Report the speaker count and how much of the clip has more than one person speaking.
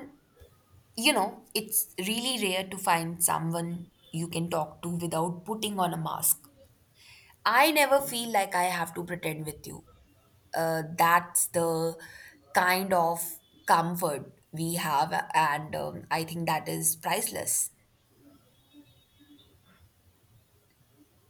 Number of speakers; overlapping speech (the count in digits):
1, no overlap